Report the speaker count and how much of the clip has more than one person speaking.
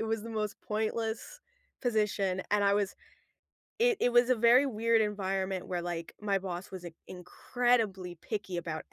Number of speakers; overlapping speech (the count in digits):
1, no overlap